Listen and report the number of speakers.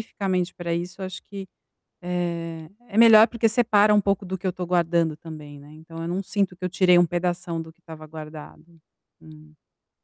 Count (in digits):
1